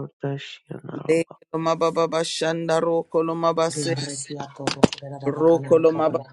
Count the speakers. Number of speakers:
3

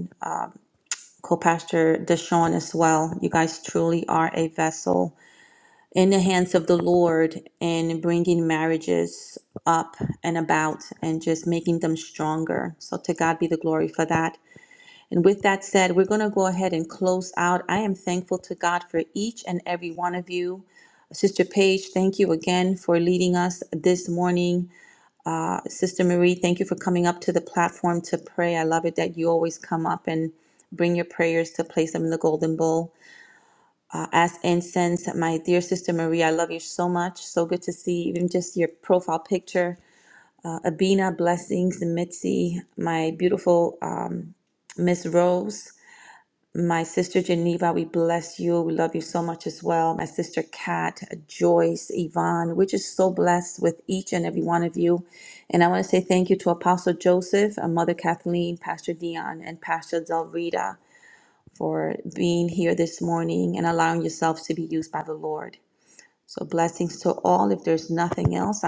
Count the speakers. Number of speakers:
1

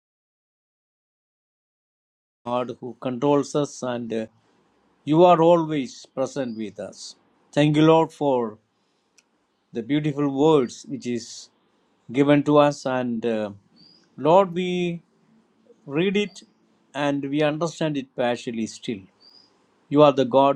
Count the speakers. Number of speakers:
1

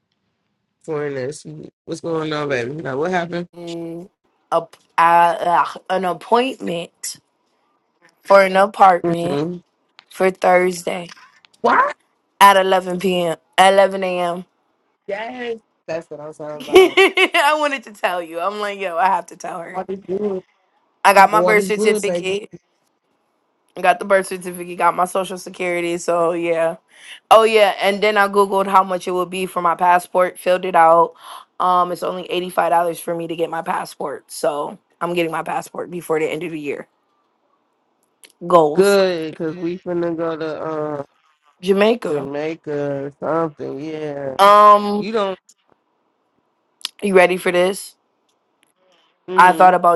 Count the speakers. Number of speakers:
2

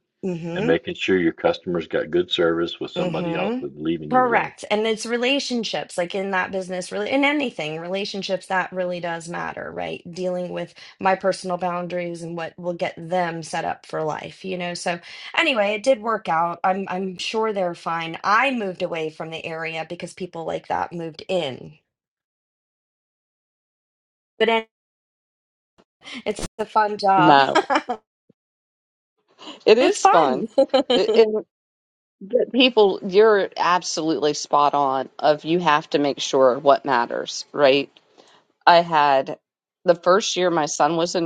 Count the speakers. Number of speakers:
3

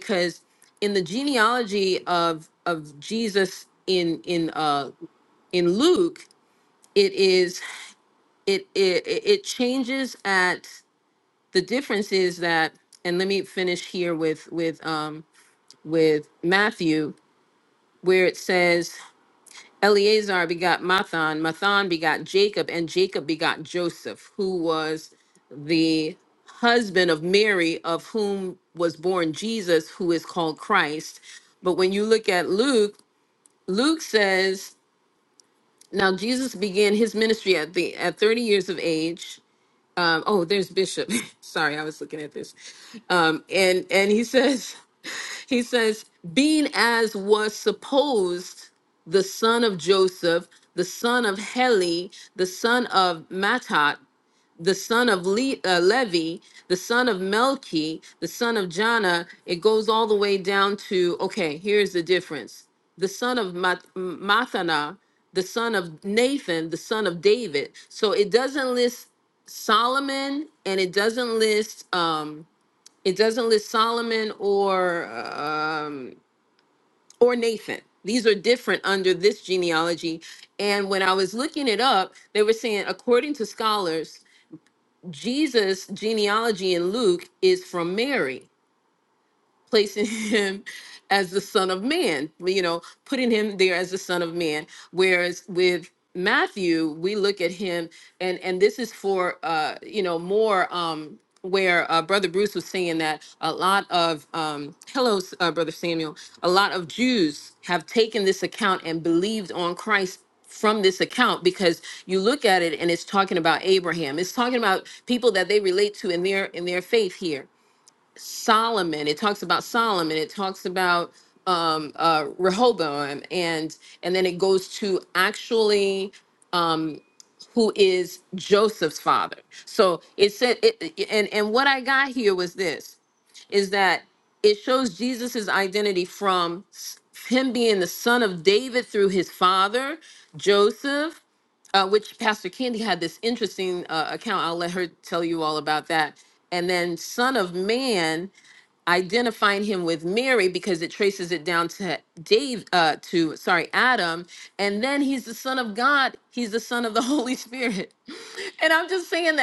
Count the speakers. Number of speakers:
1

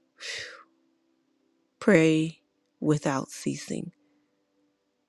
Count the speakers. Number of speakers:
1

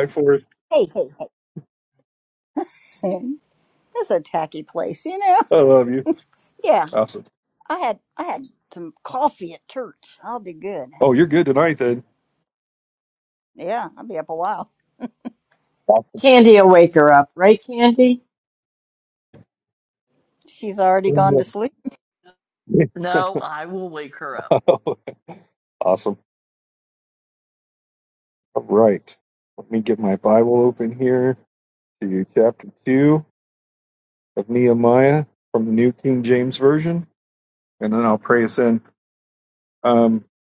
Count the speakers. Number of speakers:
4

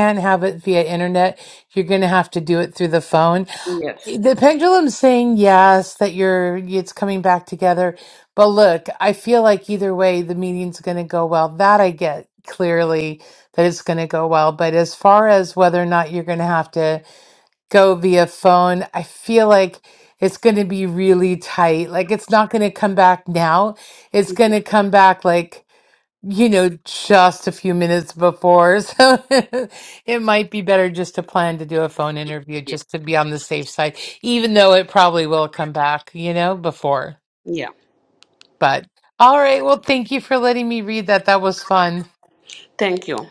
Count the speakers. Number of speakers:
2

